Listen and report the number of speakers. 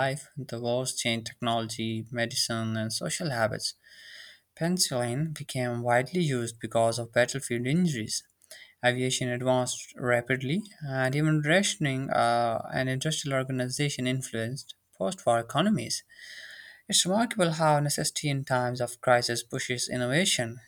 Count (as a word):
one